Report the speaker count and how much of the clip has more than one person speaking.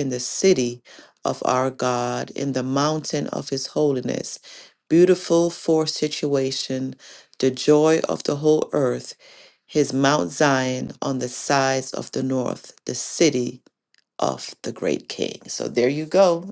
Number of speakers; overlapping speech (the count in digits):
1, no overlap